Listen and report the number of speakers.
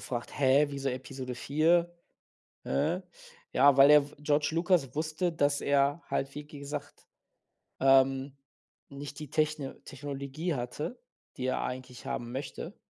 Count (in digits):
1